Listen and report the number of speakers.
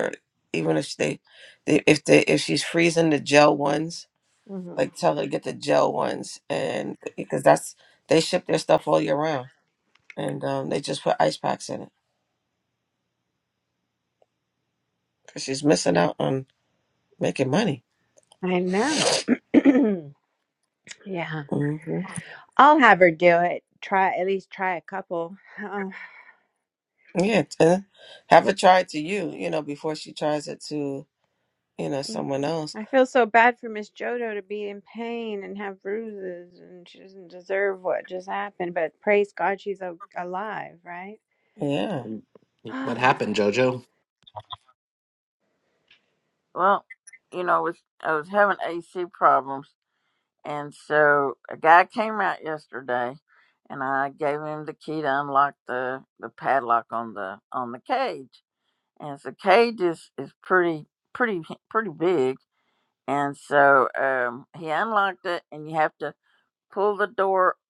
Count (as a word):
four